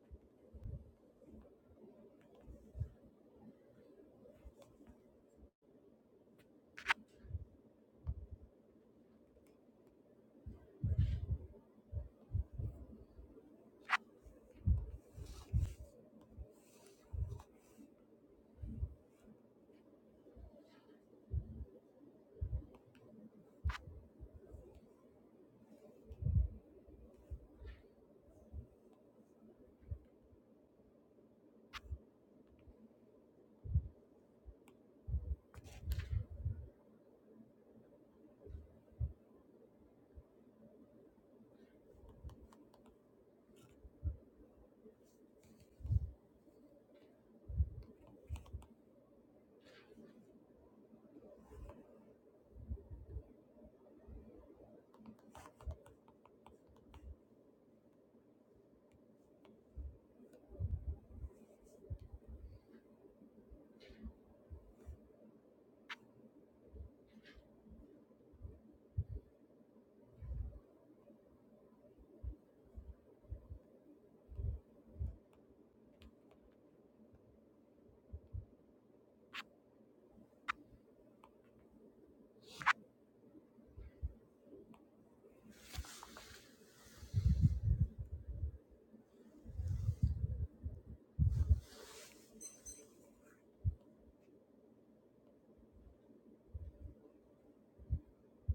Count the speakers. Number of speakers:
0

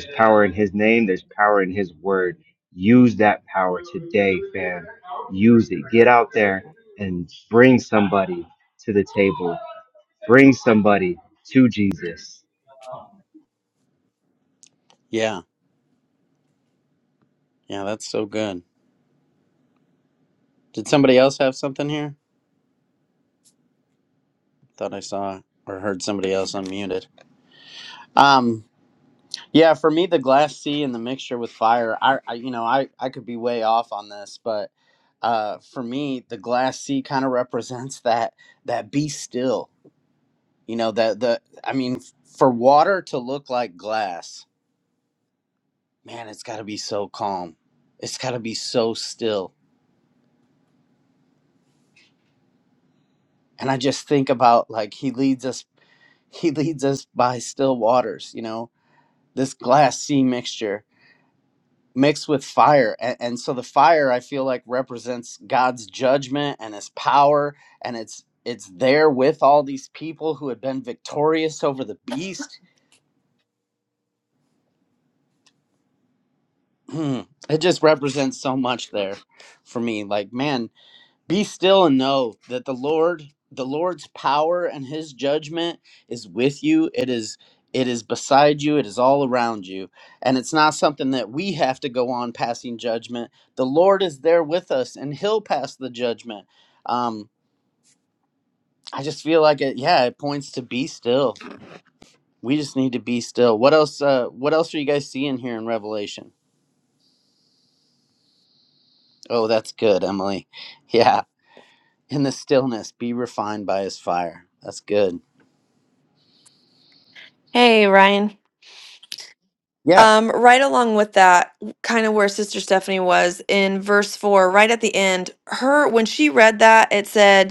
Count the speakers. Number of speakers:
3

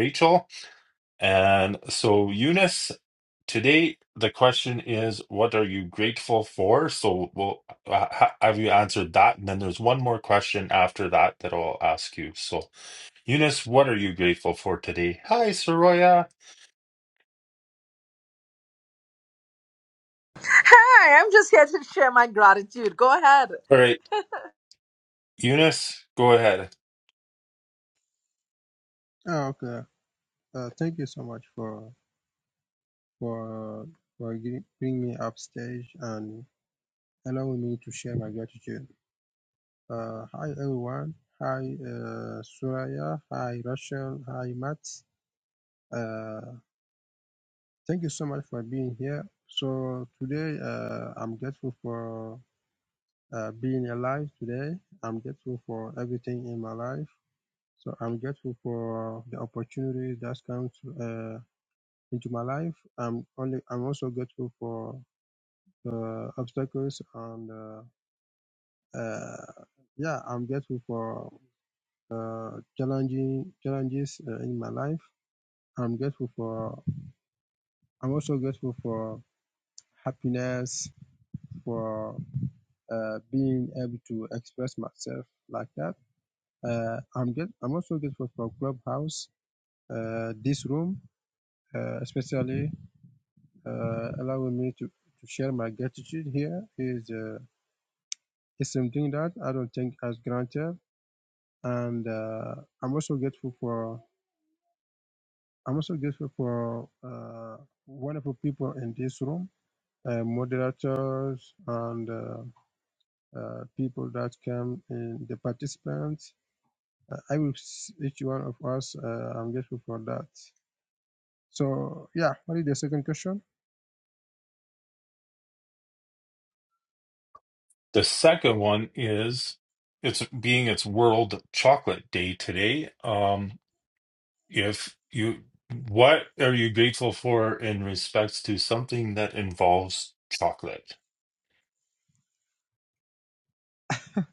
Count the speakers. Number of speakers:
3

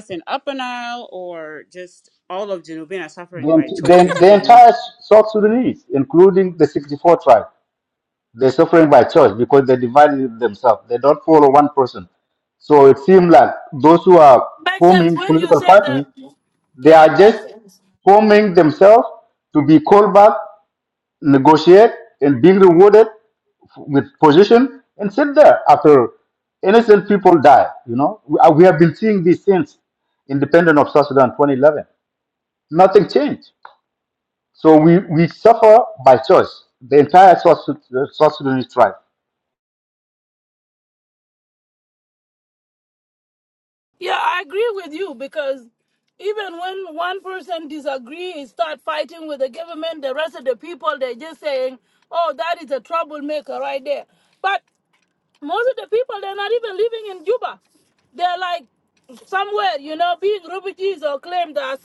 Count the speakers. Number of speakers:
3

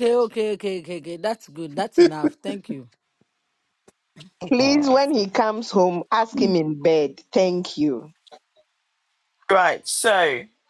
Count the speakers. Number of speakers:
3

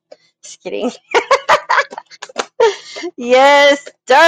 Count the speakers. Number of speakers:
1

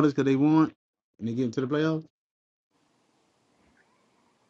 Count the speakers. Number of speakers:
1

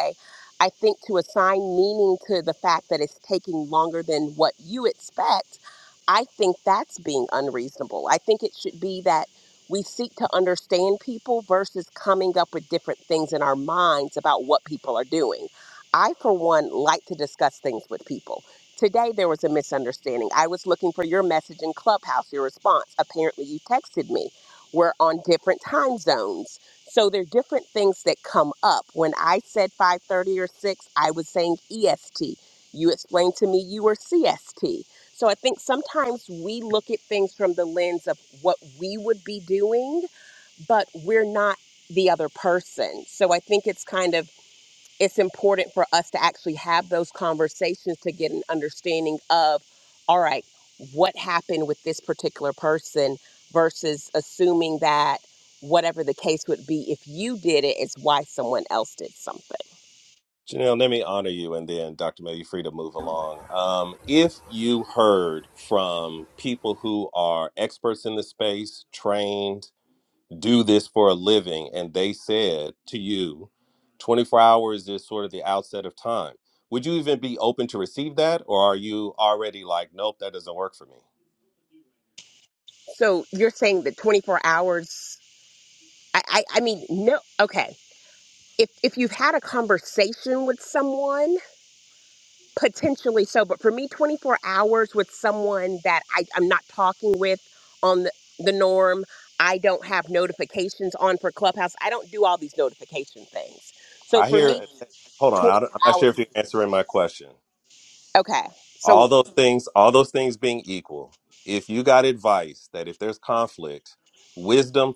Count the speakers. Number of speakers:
2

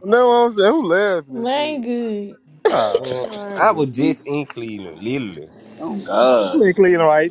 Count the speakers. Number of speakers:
4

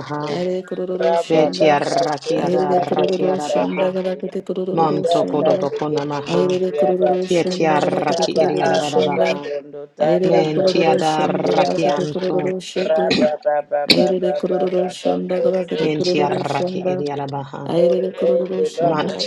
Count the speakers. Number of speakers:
3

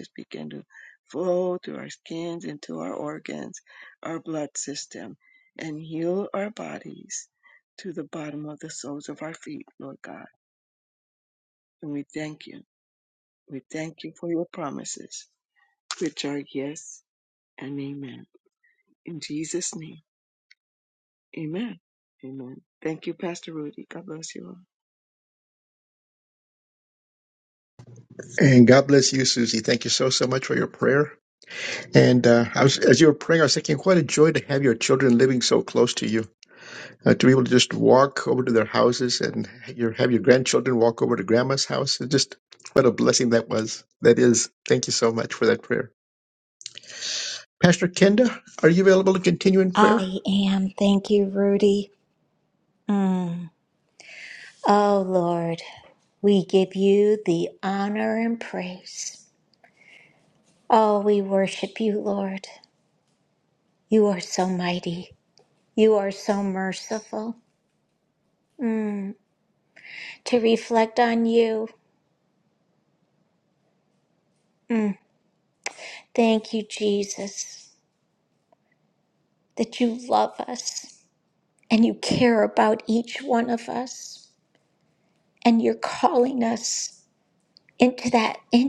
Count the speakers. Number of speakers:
3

